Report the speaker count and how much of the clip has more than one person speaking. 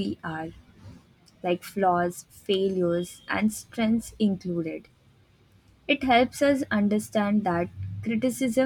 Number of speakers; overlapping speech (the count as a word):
one, no overlap